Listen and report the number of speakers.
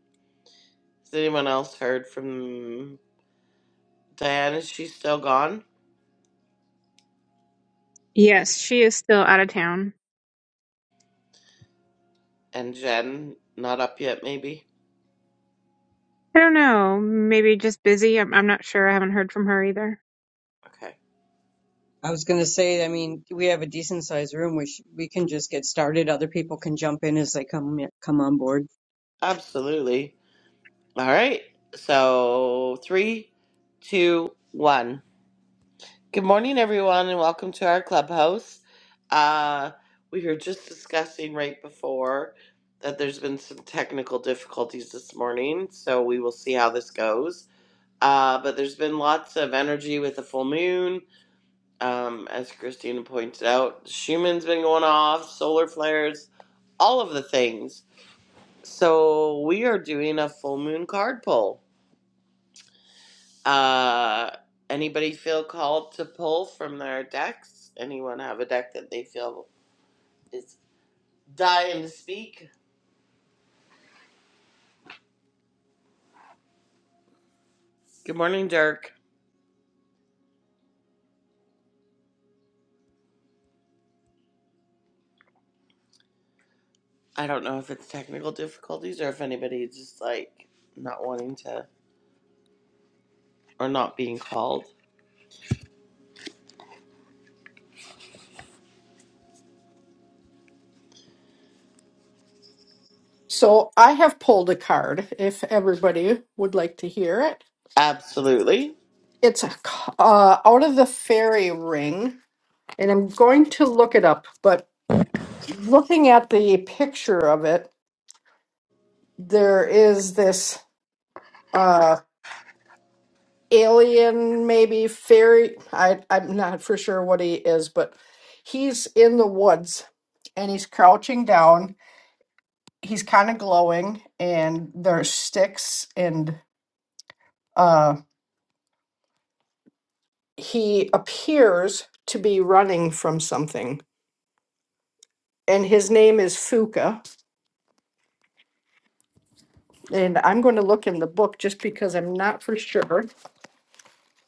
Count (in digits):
4